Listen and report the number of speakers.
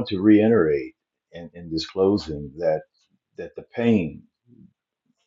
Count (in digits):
1